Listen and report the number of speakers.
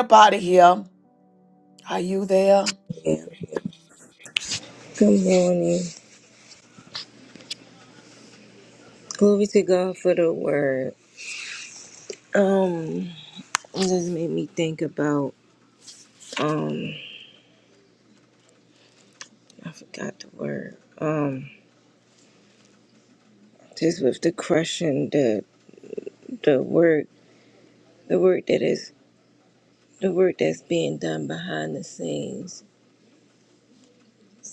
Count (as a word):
two